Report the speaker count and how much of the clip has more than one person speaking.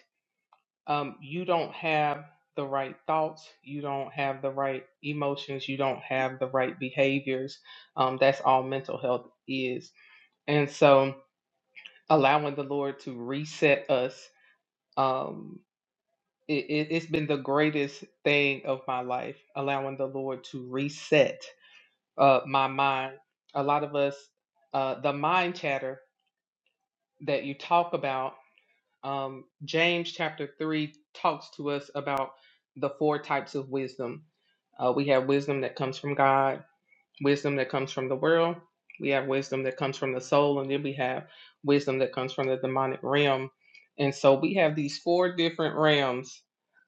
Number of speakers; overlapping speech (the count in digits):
1, no overlap